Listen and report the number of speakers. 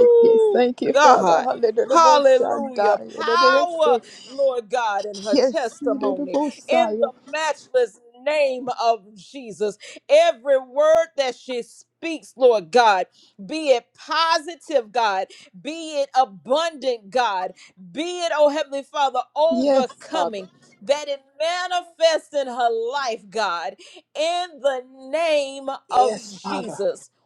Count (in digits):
2